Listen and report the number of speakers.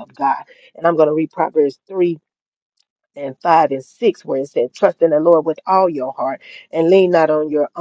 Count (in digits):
1